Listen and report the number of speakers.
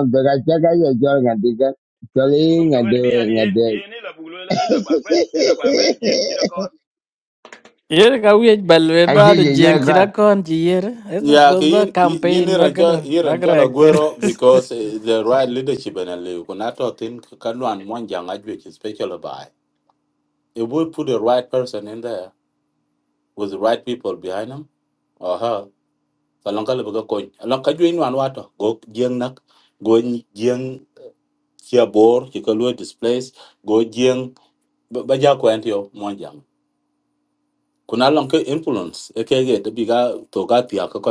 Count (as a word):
four